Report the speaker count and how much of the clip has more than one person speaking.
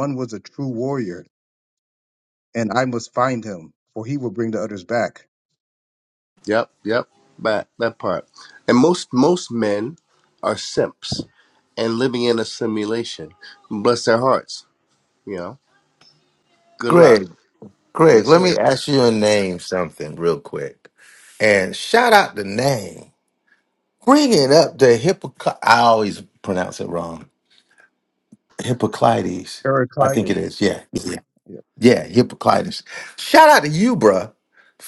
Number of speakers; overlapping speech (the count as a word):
three, about 3%